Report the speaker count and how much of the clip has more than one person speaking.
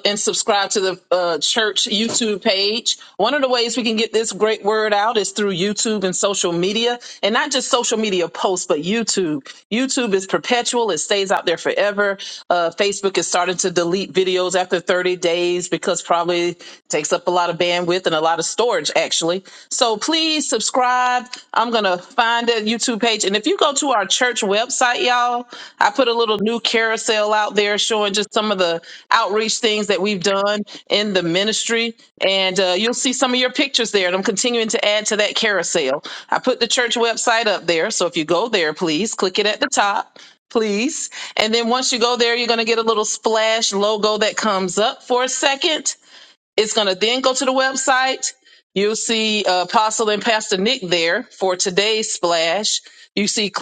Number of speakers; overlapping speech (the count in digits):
1, no overlap